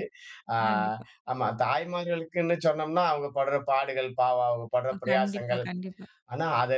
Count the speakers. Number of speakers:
2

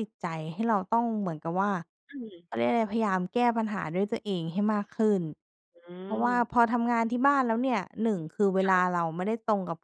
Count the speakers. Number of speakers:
2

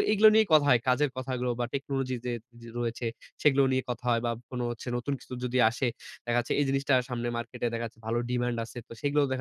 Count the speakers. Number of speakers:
1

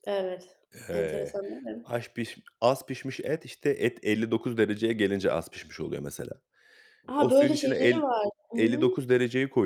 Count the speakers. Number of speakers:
2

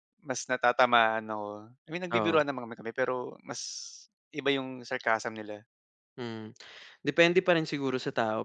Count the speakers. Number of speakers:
2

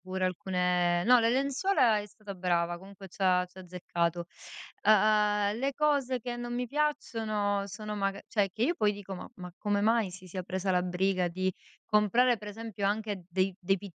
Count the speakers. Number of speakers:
1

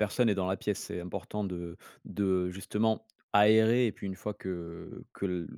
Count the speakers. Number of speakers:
1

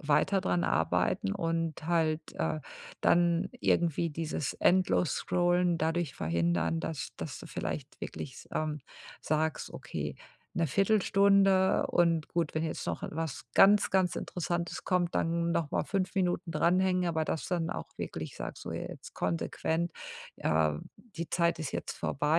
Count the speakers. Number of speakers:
1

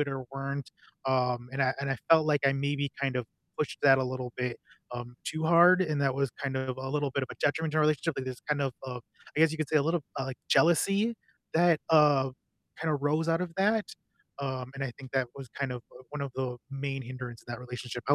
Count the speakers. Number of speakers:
1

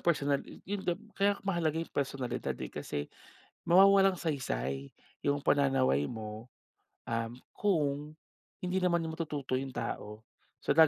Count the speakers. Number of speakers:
1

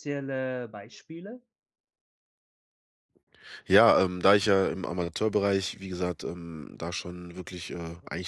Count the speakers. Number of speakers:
2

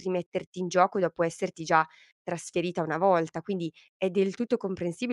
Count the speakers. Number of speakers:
1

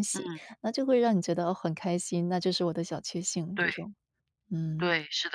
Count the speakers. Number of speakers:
2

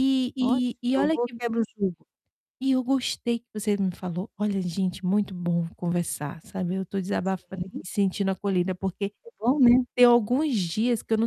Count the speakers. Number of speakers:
2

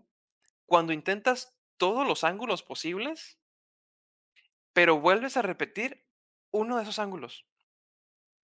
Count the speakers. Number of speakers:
1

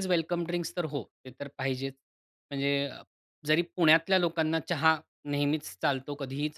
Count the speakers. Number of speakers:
1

